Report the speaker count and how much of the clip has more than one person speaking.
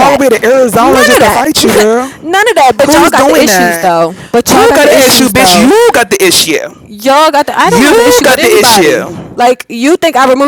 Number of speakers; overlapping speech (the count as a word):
two, about 47%